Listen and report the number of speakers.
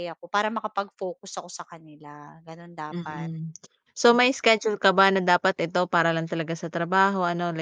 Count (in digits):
2